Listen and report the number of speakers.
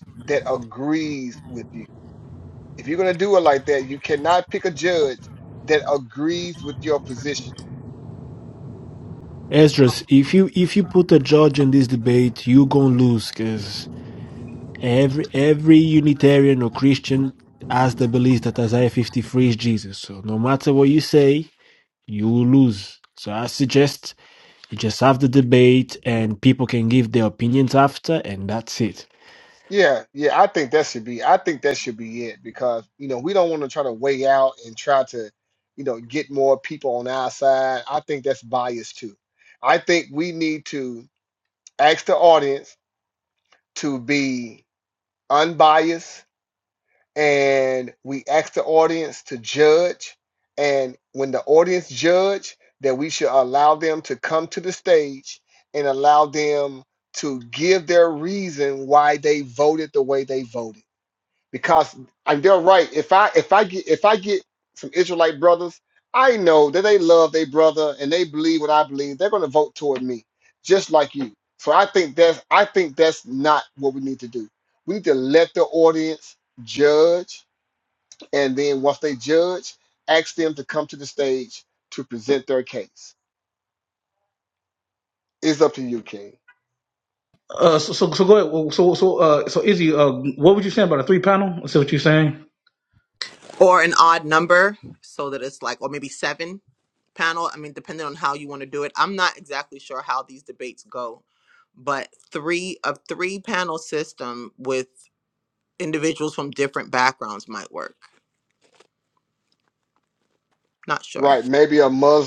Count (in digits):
4